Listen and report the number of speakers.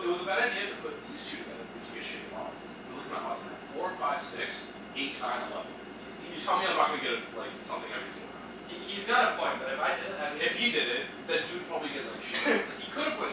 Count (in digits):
2